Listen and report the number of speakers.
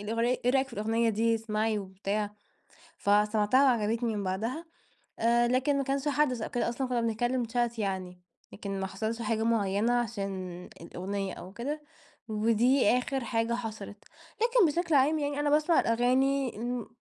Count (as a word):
one